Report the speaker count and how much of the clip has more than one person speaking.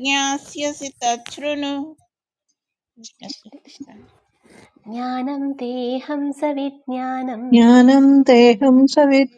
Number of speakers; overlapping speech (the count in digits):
3, about 1%